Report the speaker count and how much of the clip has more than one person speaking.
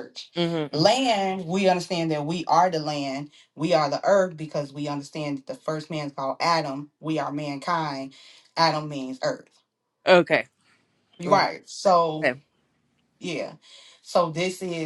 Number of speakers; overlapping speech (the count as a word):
two, about 3%